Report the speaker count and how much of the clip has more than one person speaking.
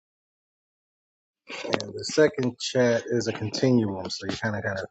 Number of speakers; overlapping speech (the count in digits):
1, no overlap